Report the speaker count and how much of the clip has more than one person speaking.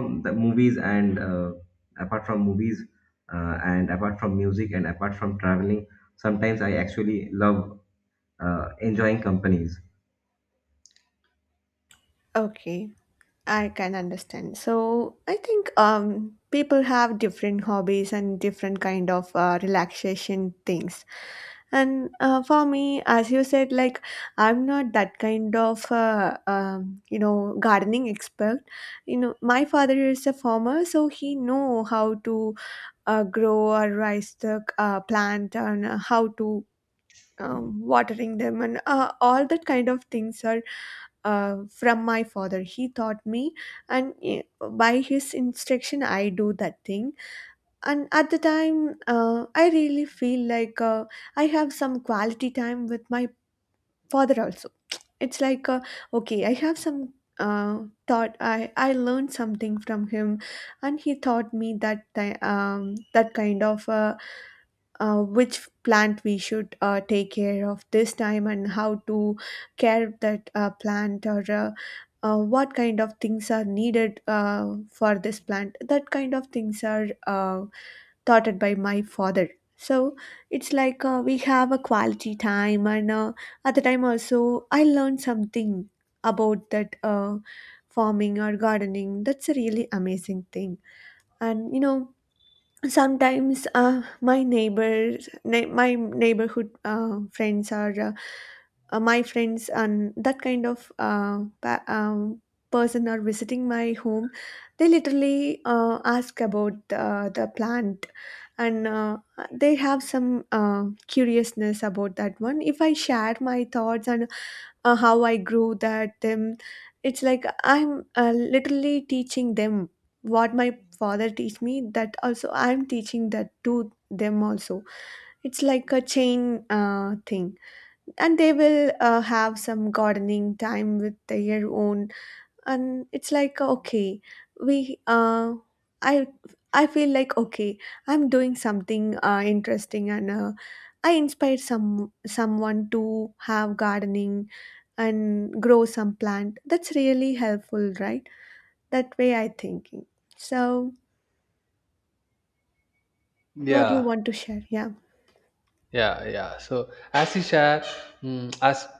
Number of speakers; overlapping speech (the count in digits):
3, under 1%